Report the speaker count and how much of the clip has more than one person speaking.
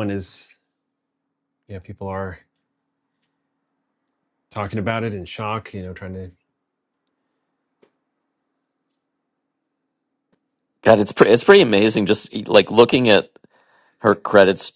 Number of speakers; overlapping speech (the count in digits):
2, no overlap